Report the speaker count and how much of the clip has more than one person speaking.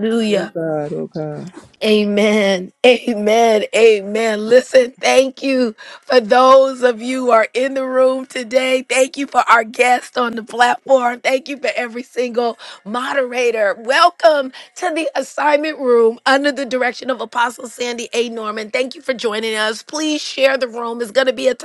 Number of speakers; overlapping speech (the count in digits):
2, about 1%